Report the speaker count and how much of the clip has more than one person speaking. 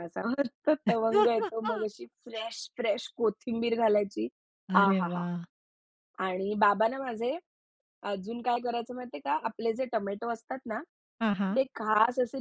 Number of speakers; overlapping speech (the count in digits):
2, about 5%